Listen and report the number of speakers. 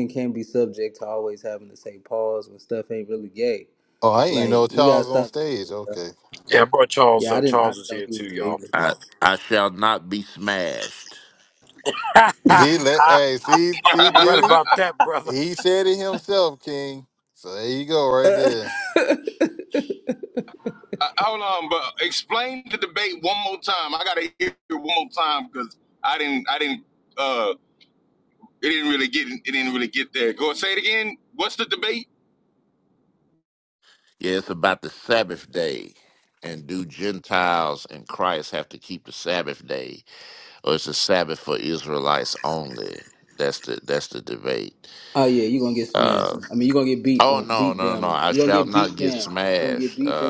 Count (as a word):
five